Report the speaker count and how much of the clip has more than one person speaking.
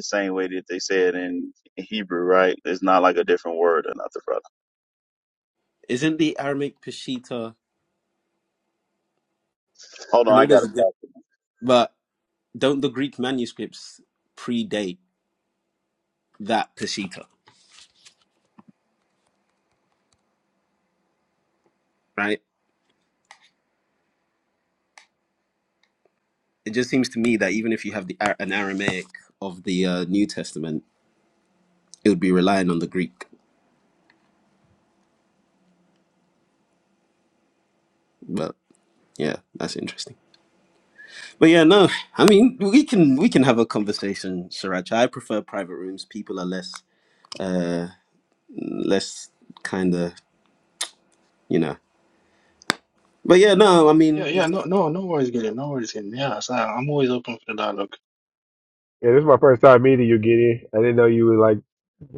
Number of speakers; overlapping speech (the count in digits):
4, about 1%